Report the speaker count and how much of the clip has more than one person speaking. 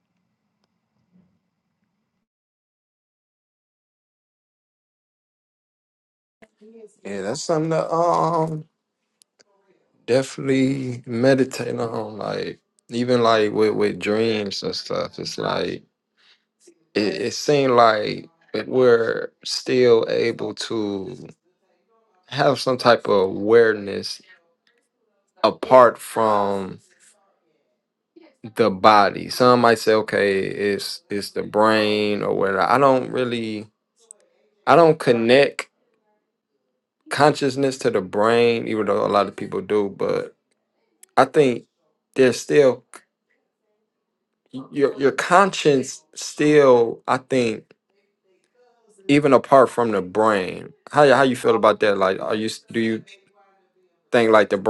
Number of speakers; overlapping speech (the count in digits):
1, no overlap